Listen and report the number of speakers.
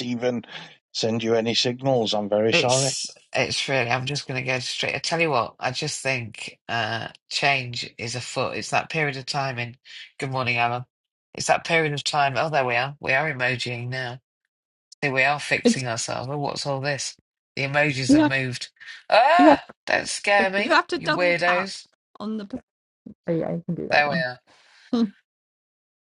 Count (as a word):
three